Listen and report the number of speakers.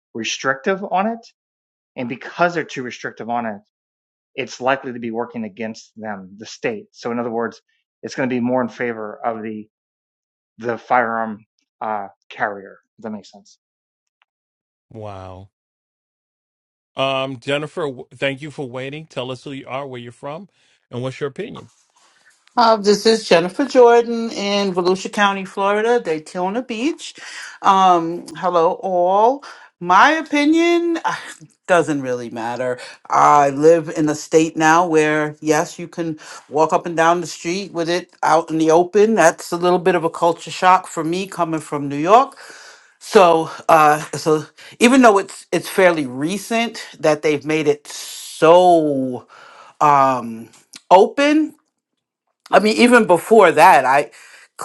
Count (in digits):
3